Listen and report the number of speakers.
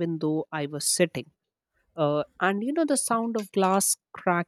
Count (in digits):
1